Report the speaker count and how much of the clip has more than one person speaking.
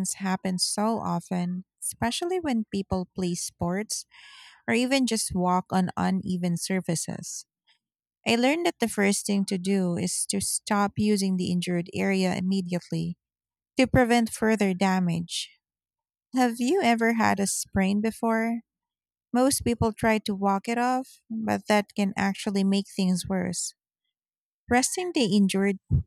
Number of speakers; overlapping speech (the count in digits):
1, no overlap